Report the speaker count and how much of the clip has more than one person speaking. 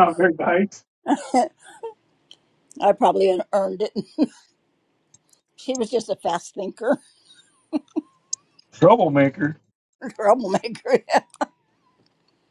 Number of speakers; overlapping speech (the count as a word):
two, no overlap